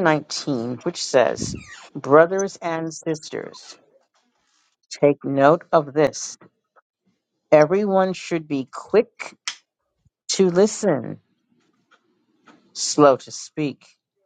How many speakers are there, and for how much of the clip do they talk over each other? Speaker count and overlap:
one, no overlap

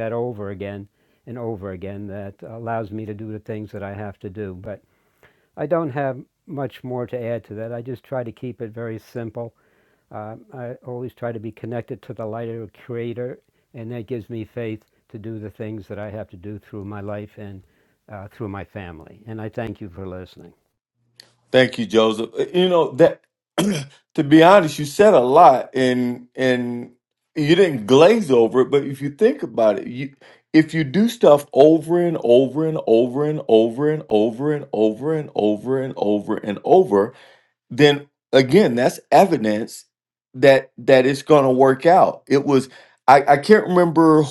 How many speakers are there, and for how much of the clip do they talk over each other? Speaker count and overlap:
two, no overlap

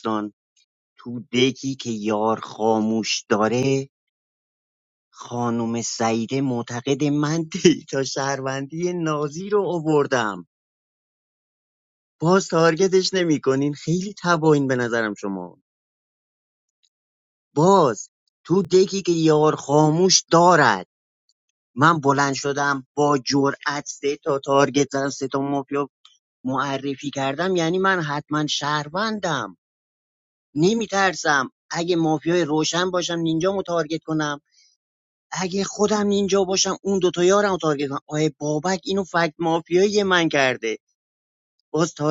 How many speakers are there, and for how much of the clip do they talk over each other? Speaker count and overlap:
one, no overlap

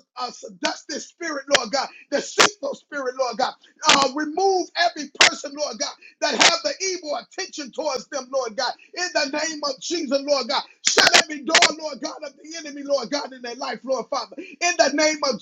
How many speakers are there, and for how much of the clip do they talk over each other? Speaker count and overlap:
one, no overlap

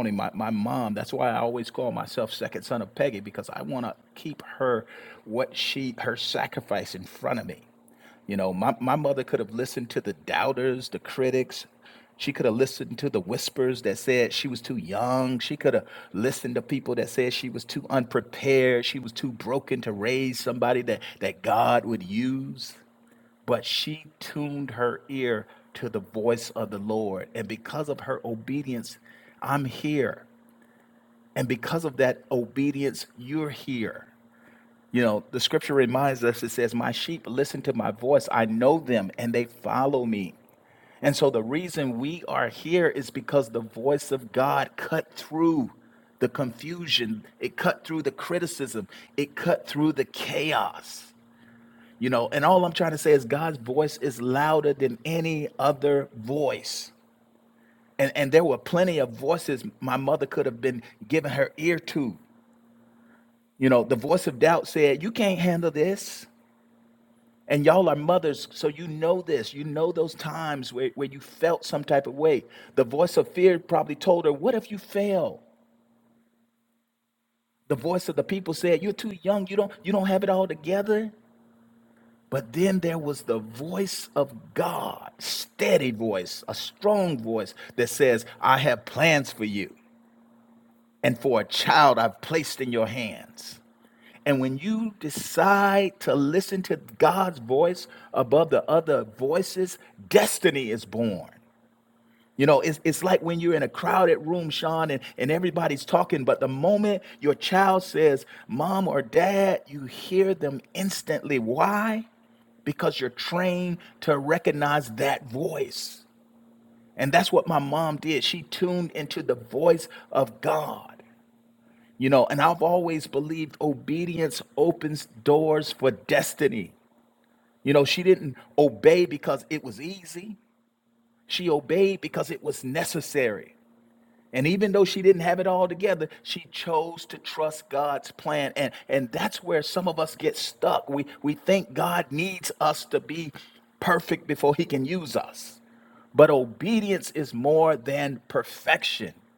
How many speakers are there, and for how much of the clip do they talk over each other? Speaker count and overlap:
one, no overlap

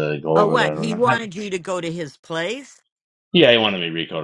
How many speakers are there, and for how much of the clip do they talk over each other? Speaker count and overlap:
two, about 20%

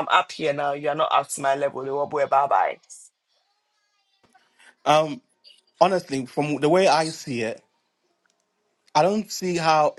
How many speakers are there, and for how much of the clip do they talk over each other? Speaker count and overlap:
two, no overlap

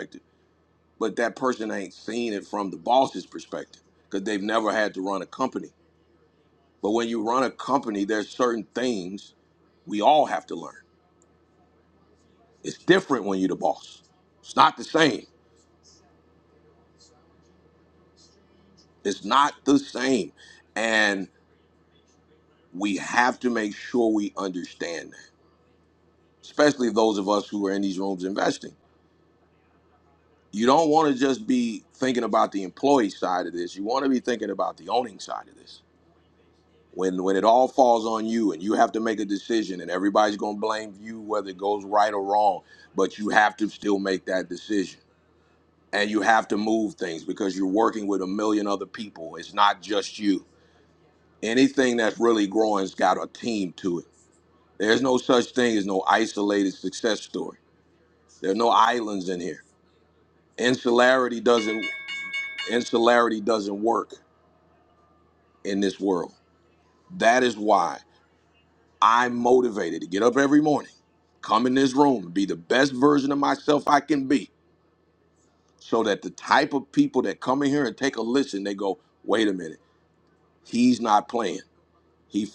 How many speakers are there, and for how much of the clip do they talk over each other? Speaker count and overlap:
one, no overlap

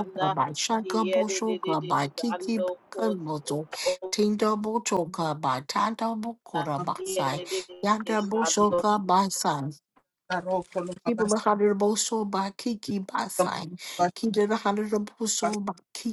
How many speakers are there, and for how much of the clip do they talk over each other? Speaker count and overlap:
three, about 29%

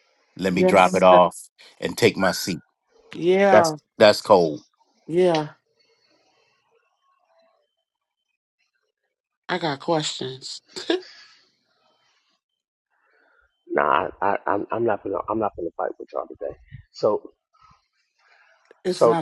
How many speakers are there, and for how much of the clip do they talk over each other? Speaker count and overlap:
three, about 6%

